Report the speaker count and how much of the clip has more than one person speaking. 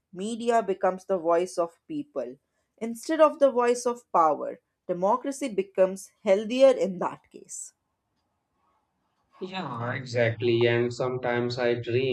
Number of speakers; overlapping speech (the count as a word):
two, no overlap